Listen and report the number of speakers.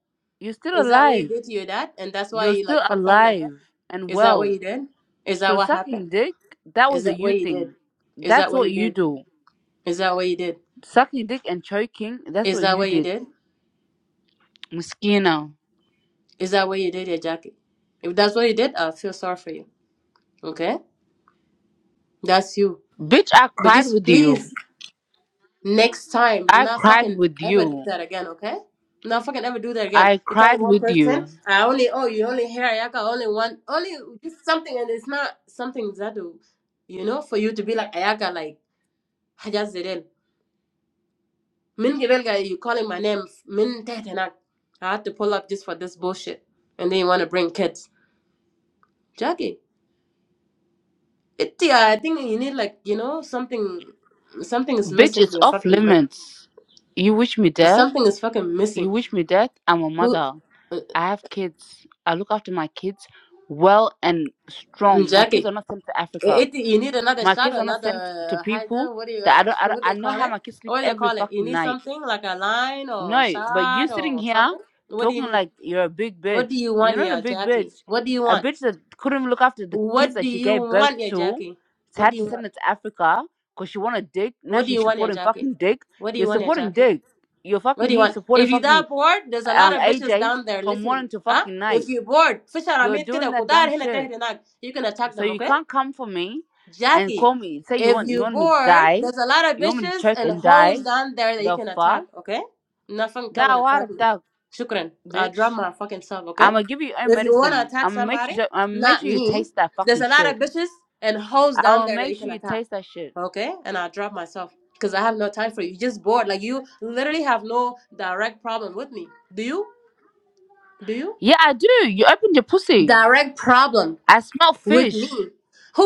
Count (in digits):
2